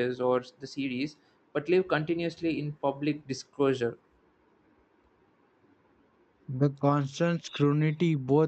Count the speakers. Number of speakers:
two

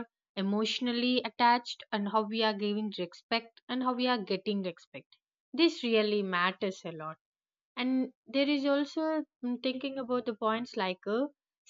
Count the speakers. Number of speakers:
one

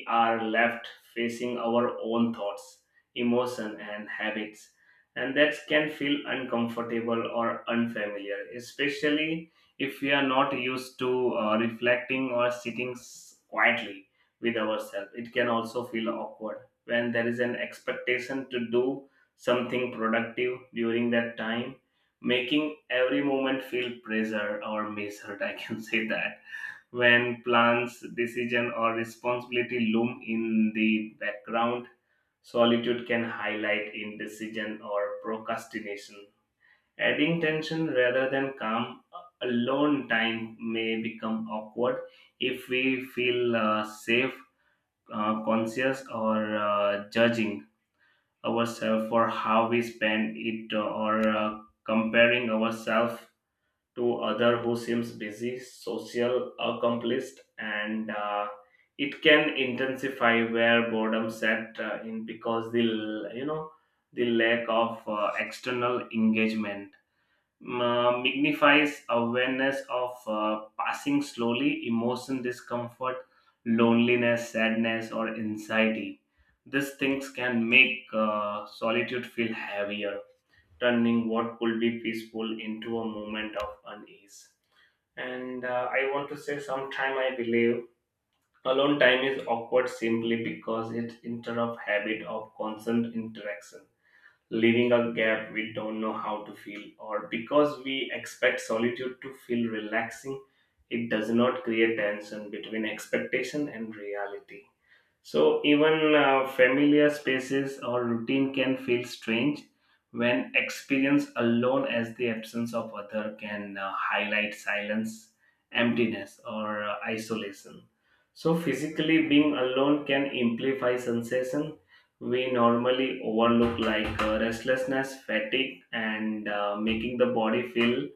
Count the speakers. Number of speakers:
one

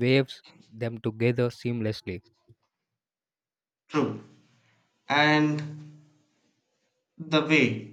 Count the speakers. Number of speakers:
two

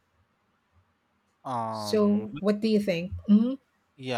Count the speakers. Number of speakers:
two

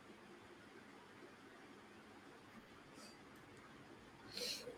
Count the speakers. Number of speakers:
zero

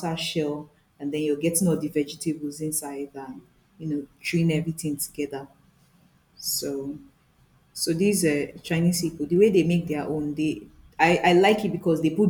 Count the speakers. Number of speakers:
one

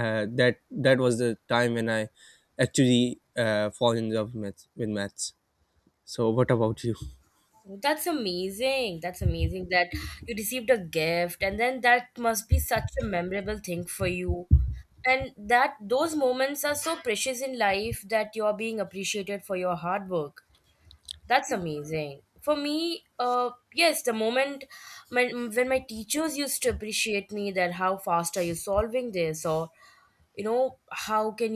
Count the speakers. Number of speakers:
two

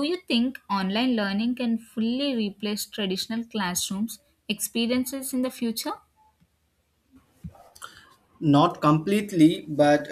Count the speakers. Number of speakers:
two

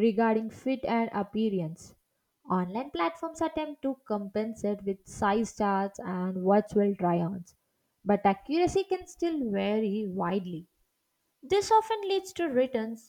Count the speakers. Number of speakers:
one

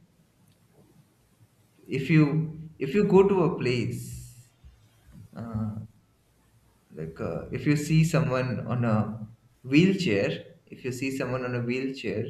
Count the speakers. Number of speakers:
one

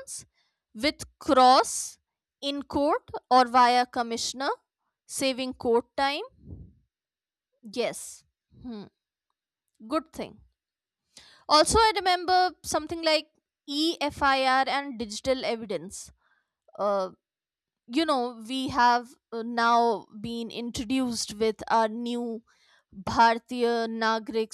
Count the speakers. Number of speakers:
one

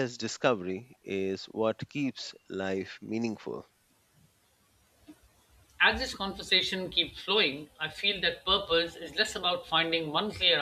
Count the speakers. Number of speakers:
two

